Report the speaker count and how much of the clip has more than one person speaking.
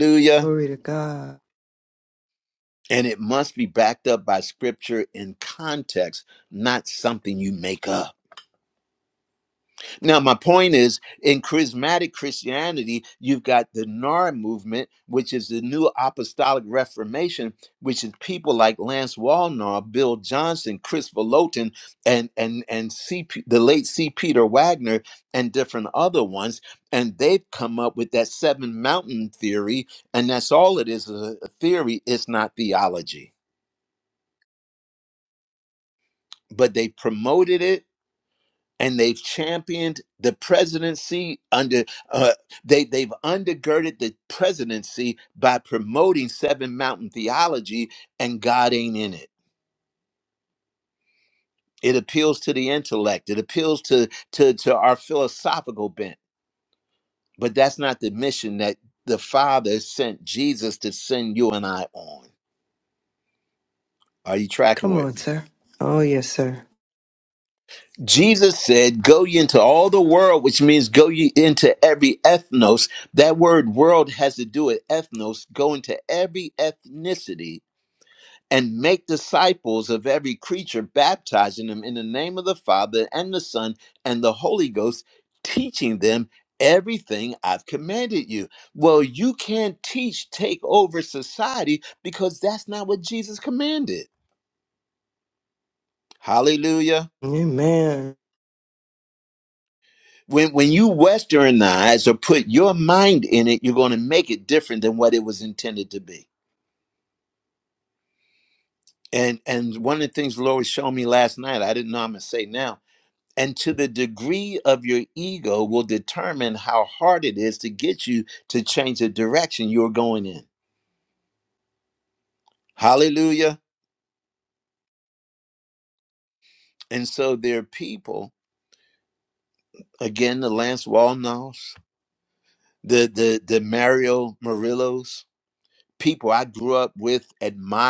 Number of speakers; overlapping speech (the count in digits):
2, under 1%